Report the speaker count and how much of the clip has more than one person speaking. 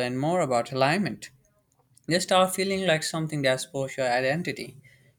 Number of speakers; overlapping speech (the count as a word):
one, no overlap